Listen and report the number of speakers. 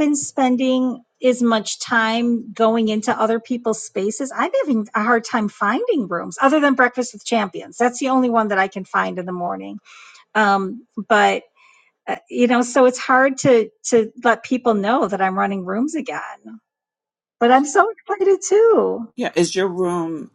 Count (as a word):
two